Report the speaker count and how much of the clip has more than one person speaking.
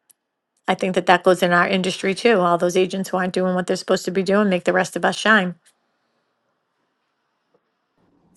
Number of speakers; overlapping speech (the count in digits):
1, no overlap